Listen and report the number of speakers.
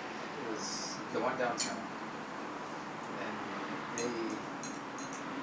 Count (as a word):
one